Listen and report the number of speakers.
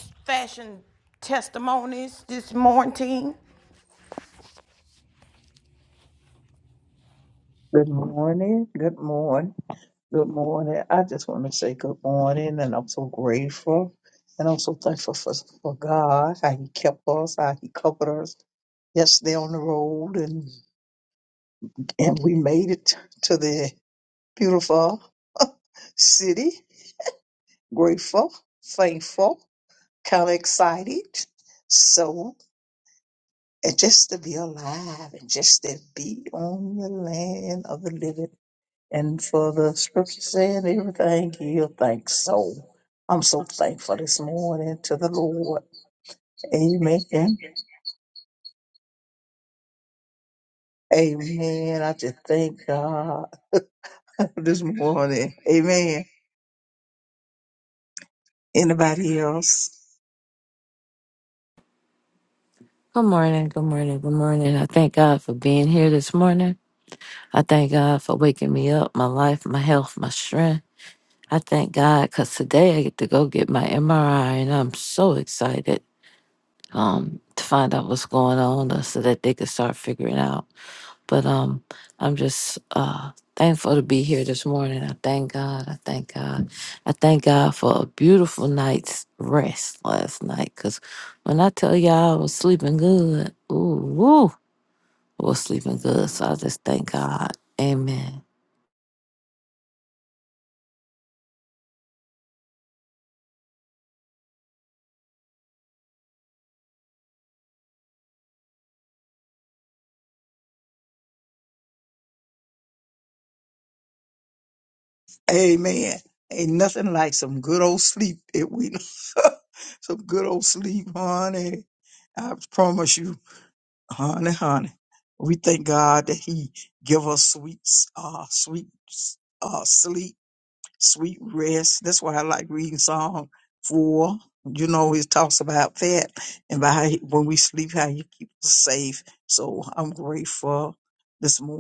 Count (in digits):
3